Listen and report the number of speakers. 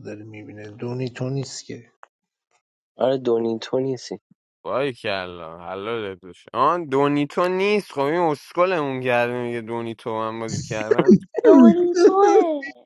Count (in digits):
4